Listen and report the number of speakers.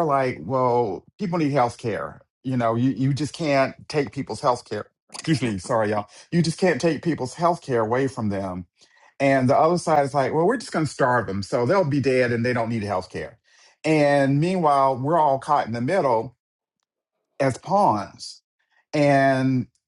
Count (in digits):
1